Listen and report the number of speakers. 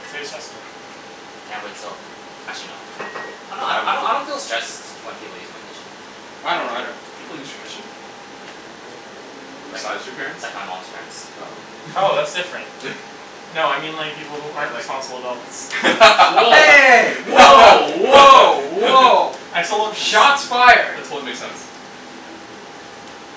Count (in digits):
4